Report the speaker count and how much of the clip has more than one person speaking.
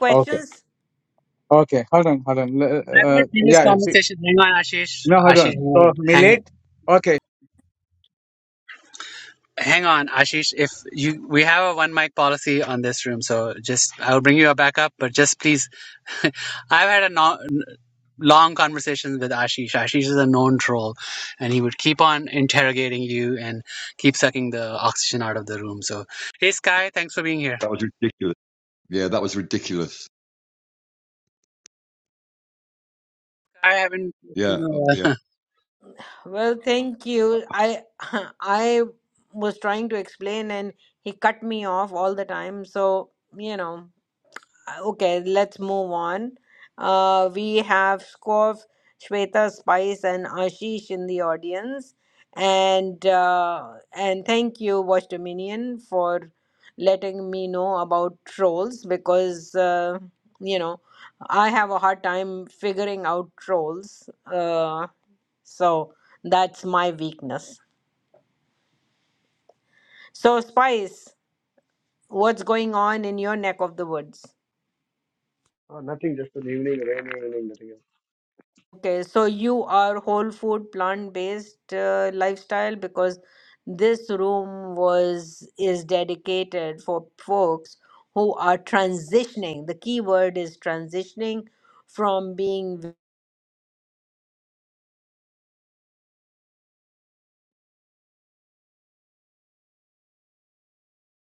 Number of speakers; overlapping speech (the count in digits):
5, about 2%